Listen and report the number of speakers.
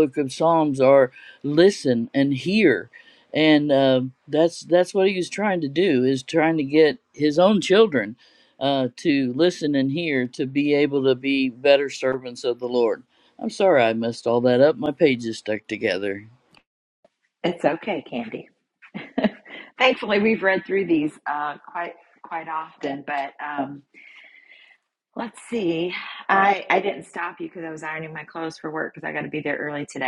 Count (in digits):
2